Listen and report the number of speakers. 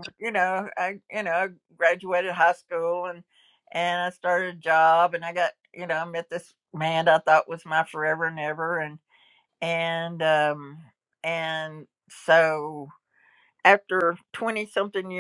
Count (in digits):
1